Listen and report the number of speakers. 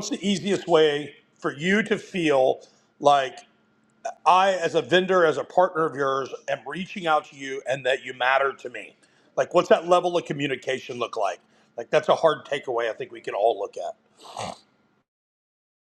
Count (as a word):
one